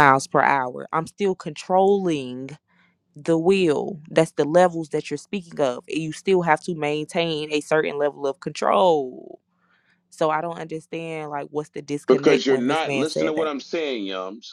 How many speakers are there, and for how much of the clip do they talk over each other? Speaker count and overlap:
2, about 10%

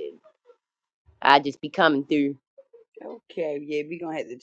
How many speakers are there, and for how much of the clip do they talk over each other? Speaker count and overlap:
2, no overlap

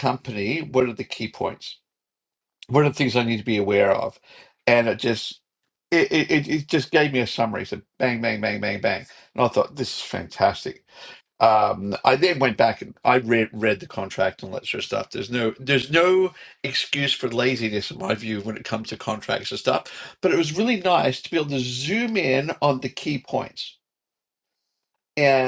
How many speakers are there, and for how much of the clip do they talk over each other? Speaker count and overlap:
1, no overlap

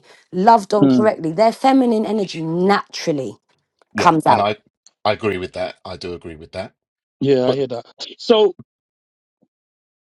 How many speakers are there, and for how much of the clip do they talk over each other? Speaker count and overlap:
3, about 9%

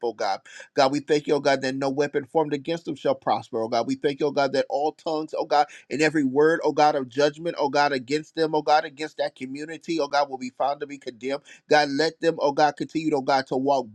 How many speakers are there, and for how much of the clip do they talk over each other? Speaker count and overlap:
1, no overlap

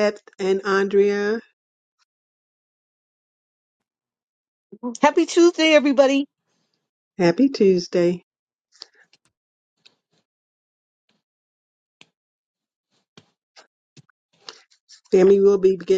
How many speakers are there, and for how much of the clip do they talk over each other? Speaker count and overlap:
2, no overlap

